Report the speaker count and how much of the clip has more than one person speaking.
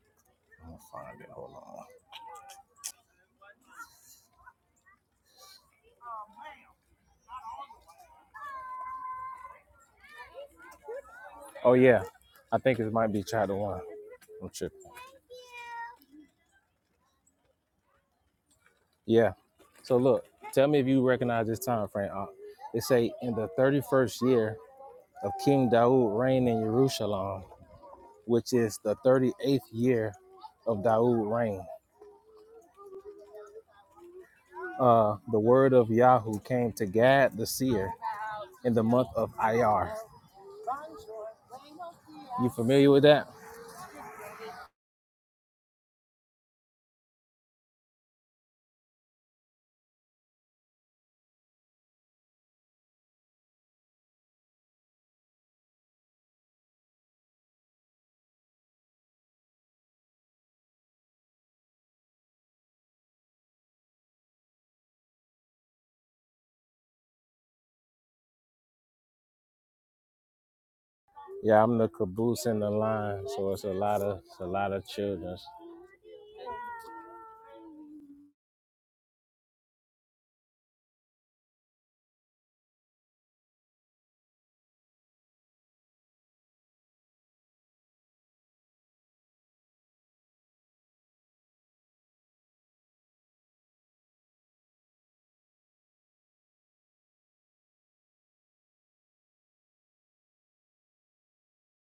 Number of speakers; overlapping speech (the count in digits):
1, no overlap